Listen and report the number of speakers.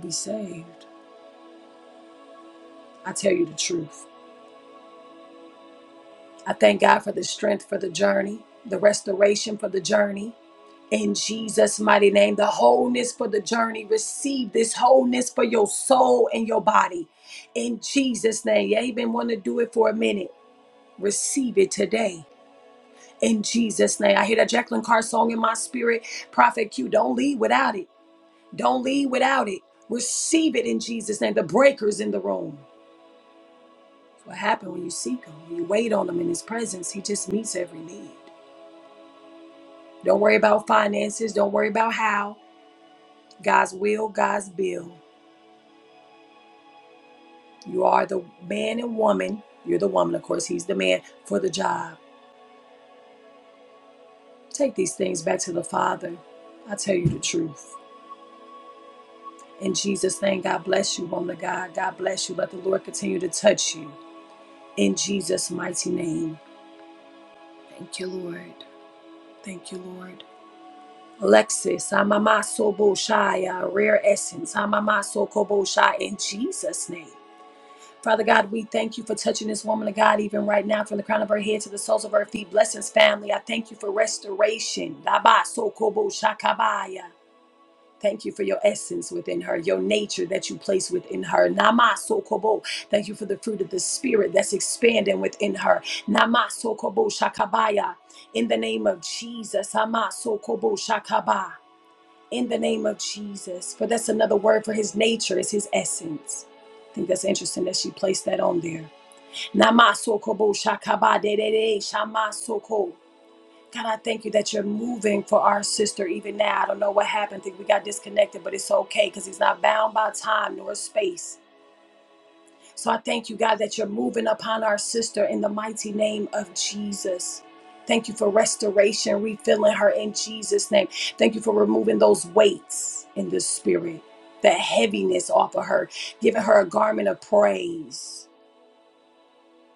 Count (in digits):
1